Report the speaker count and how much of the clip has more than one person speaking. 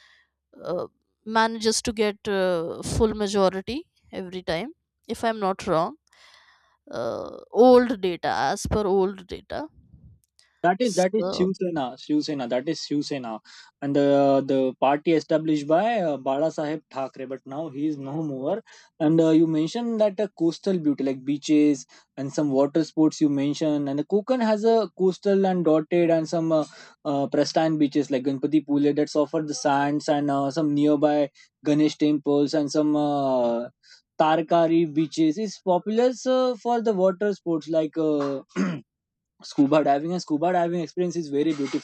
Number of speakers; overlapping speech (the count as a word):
two, about 1%